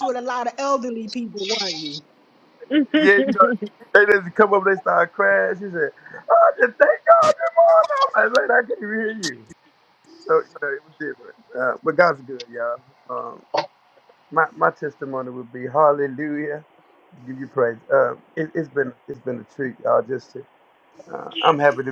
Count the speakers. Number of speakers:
two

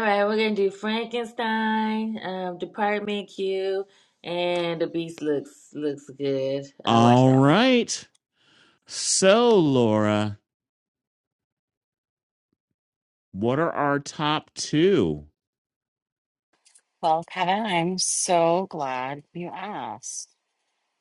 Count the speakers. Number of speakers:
three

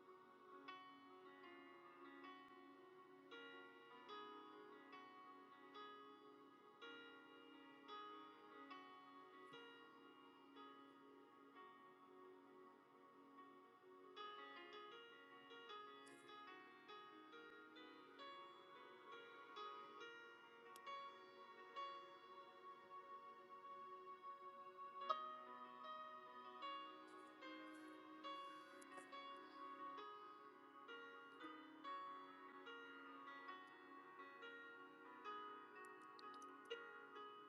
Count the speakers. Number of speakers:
zero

